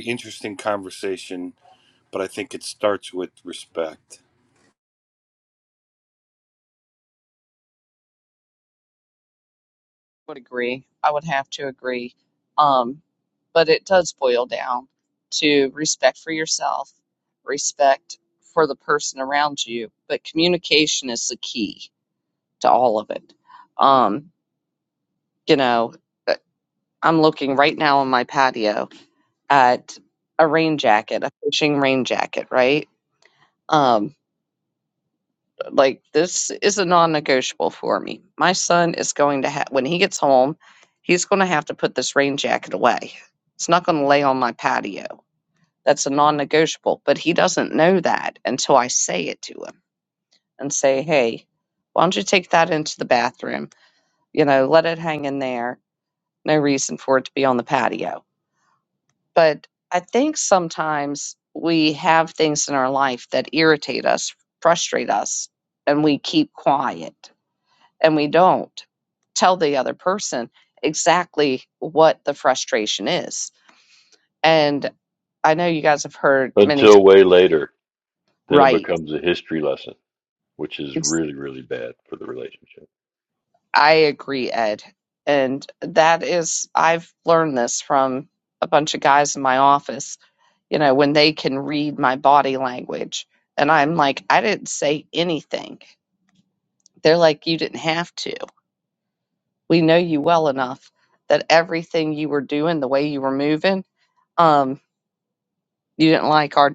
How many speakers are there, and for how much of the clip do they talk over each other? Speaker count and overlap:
three, about 1%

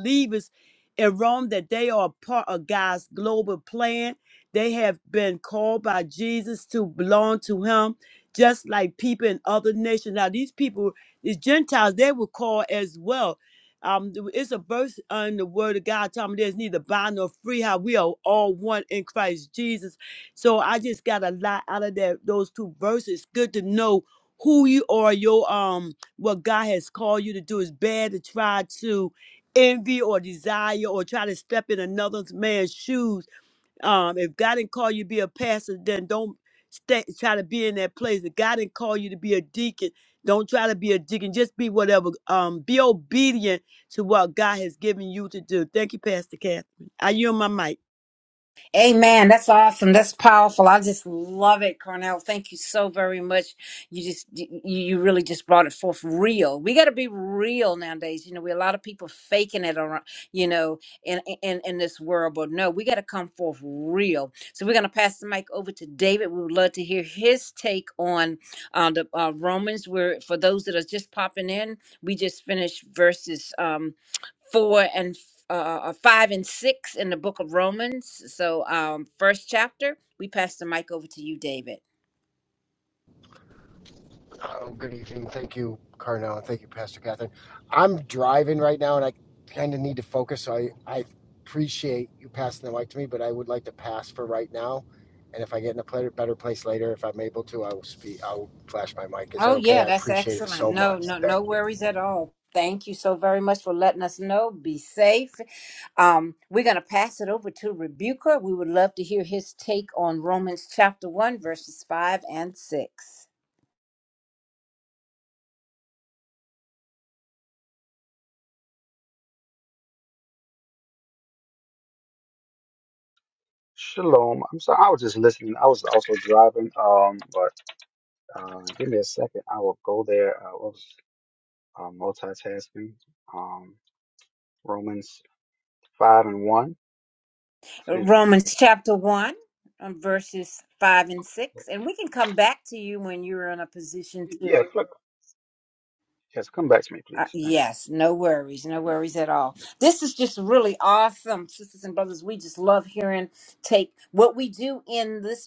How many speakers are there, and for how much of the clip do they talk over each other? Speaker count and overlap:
four, about 2%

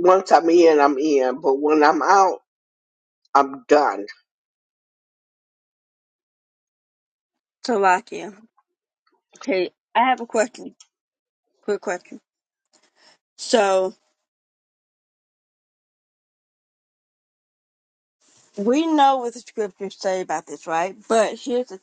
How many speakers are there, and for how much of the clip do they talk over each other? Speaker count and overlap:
two, no overlap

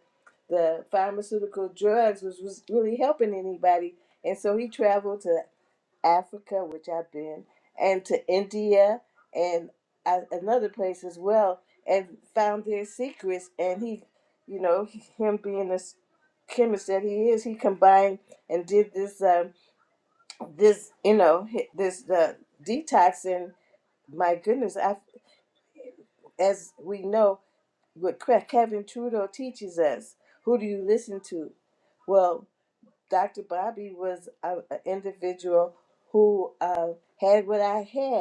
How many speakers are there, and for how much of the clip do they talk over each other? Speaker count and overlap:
one, no overlap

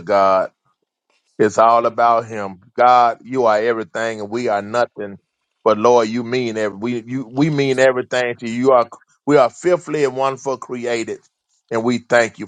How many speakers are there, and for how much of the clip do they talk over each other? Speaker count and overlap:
one, no overlap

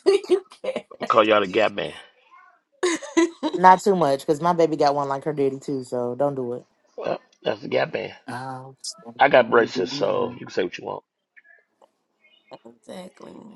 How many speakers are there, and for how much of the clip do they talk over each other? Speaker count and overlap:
four, about 8%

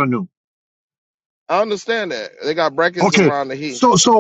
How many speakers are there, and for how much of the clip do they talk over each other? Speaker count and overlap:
two, about 9%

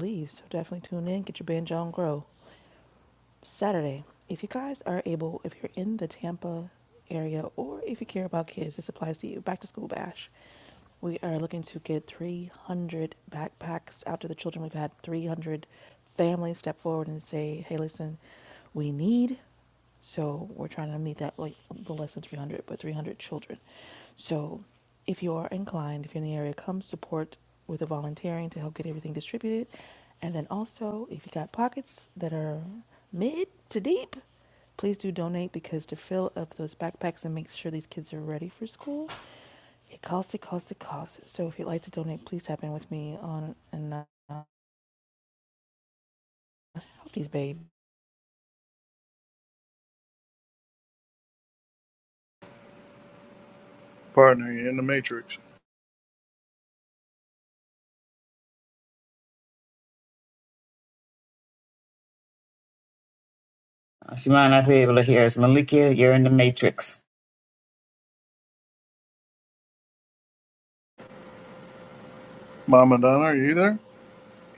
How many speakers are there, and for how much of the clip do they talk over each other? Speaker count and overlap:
three, no overlap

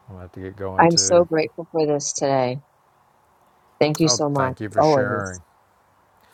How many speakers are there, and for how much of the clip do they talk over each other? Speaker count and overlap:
two, about 27%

